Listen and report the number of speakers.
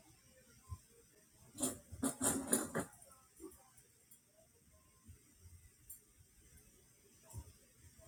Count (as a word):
zero